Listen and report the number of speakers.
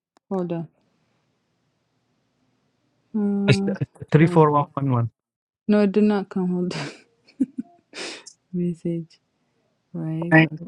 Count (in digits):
2